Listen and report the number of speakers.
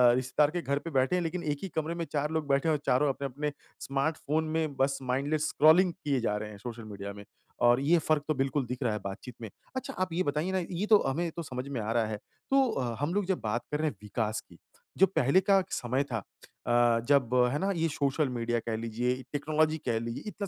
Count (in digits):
1